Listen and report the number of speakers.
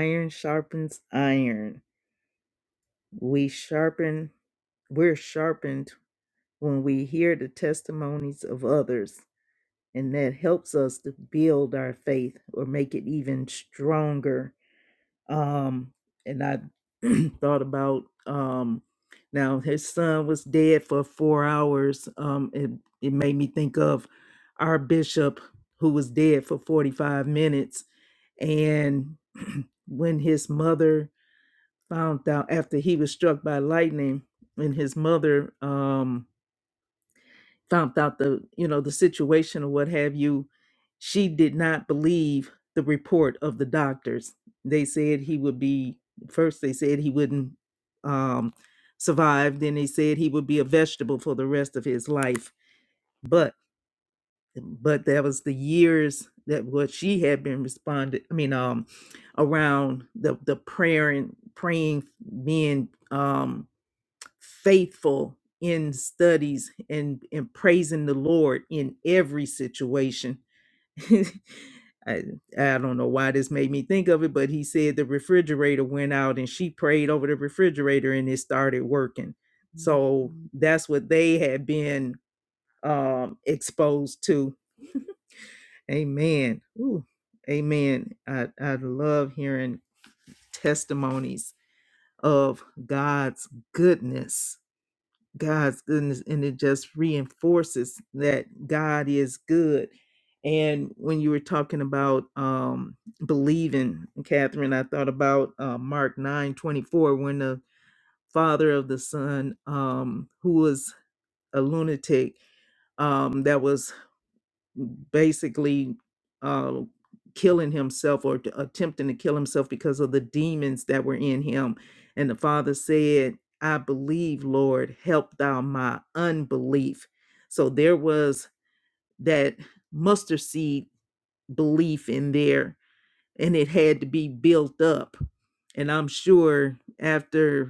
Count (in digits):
1